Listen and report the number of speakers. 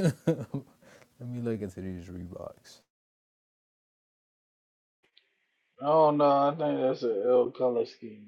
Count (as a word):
two